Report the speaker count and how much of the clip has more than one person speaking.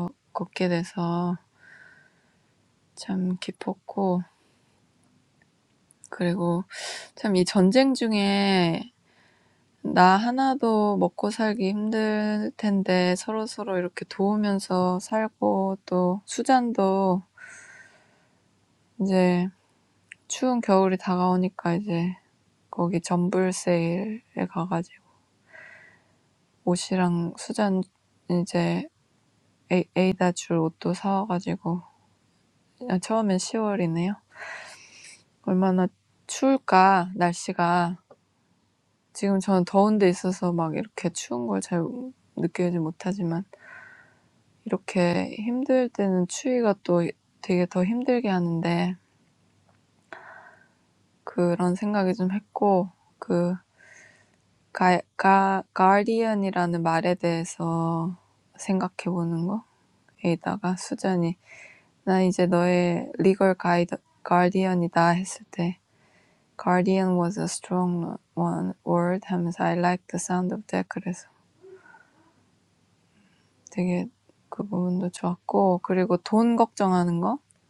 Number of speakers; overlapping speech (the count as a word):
one, no overlap